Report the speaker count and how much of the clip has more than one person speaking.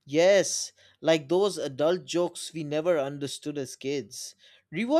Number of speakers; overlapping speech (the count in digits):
1, no overlap